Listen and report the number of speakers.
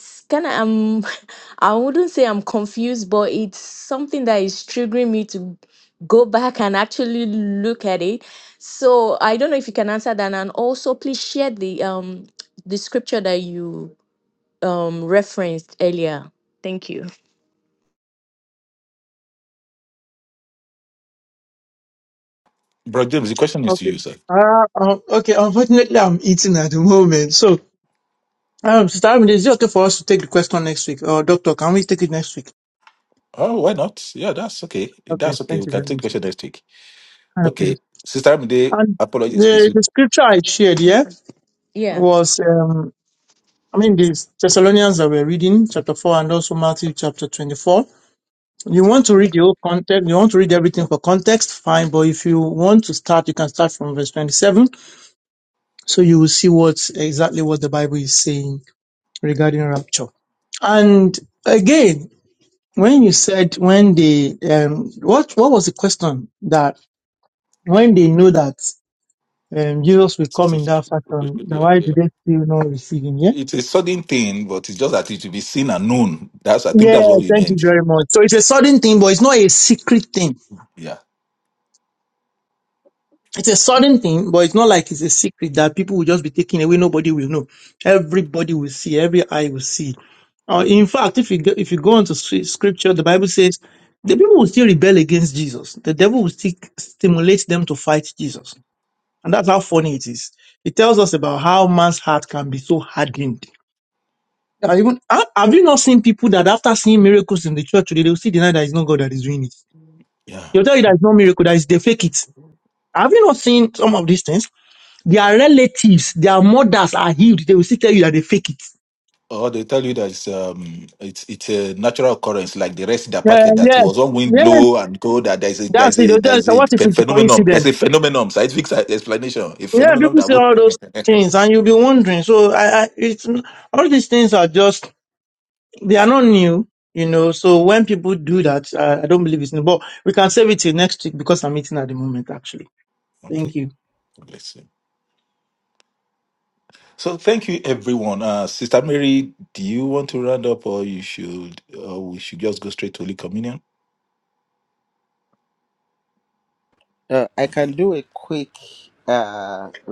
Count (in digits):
4